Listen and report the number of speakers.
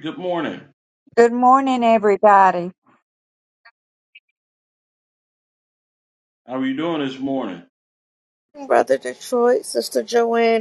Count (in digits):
3